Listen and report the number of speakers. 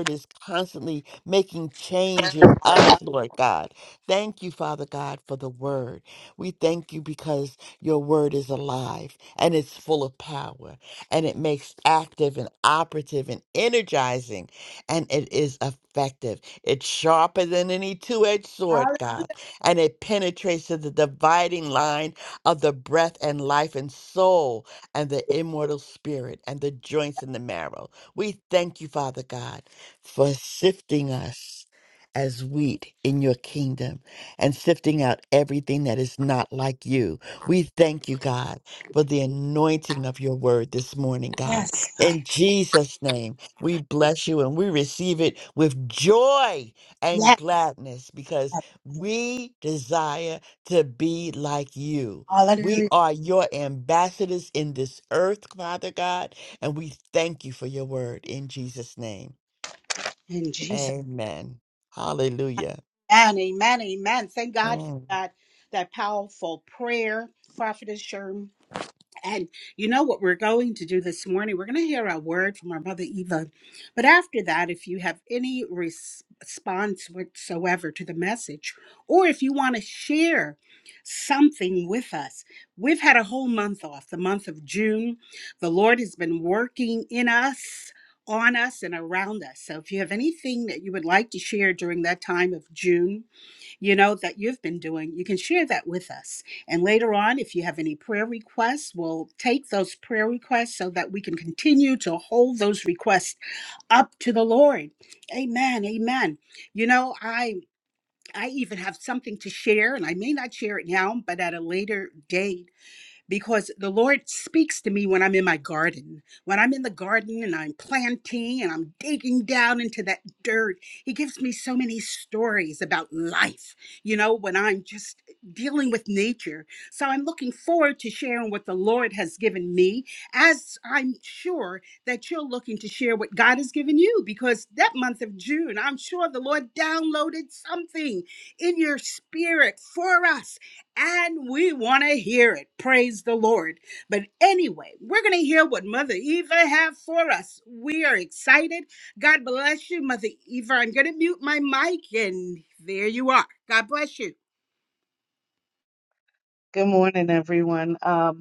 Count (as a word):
three